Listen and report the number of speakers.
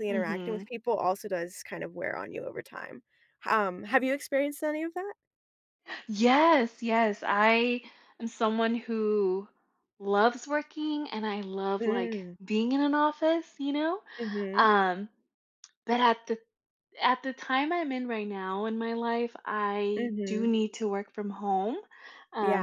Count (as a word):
two